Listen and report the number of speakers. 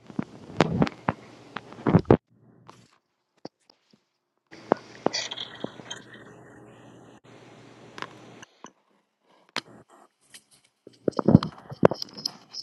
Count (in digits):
0